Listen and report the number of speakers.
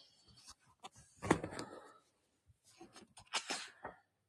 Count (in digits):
0